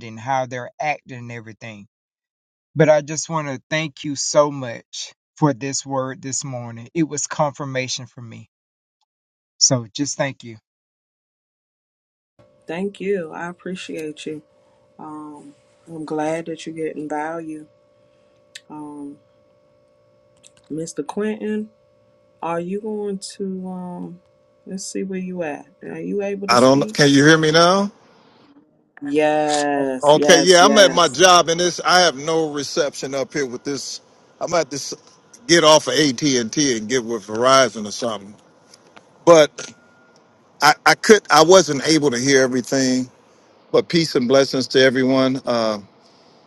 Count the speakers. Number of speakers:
three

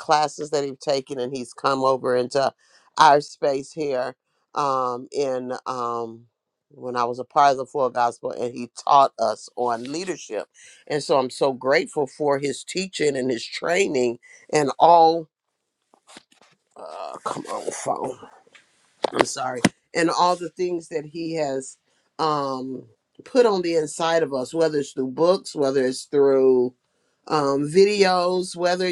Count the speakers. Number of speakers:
one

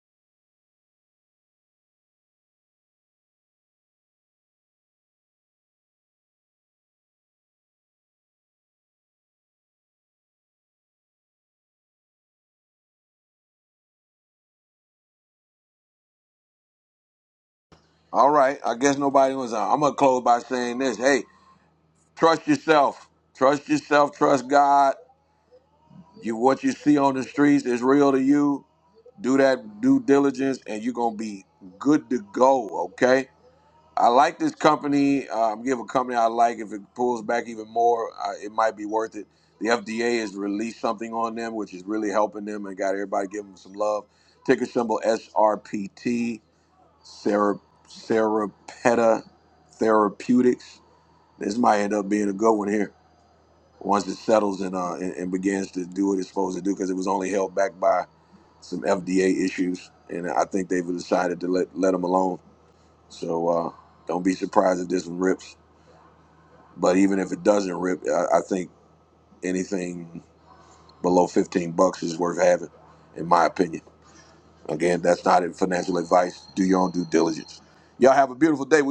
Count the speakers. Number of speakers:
one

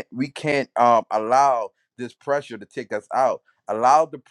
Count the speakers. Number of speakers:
one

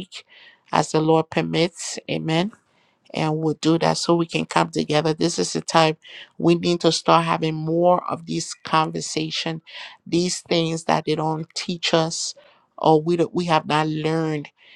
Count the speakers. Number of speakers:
one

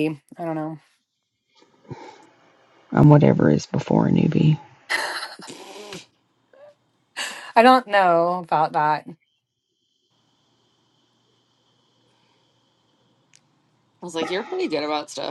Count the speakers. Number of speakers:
three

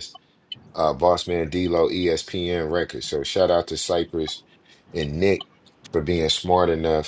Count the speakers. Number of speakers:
one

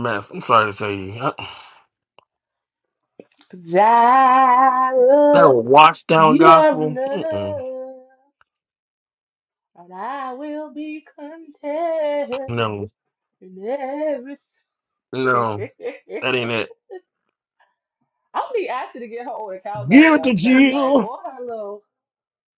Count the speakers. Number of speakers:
two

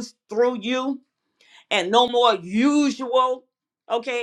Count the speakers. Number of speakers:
one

